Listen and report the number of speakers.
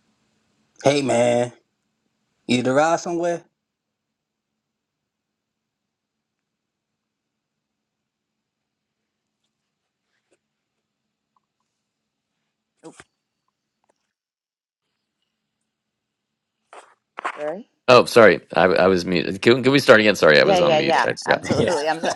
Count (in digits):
3